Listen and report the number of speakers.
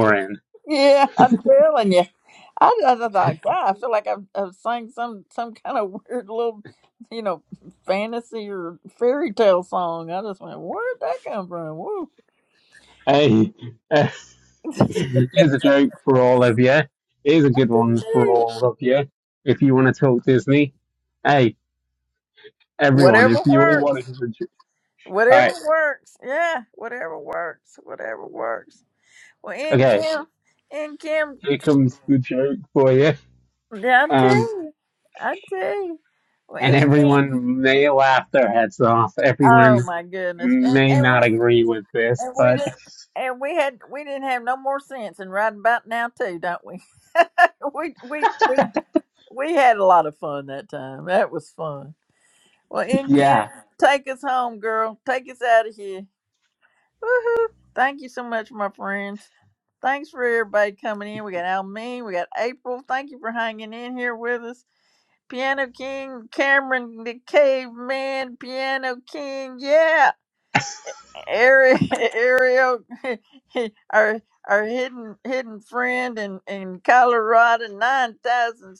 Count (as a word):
two